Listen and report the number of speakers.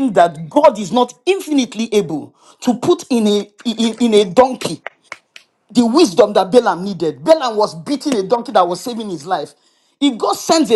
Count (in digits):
1